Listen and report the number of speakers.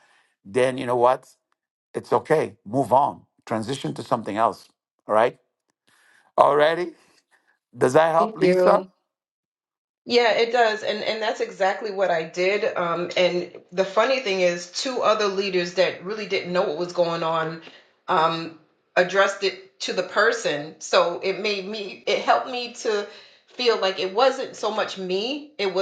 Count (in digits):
2